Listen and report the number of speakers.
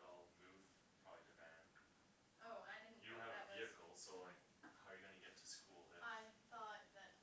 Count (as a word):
two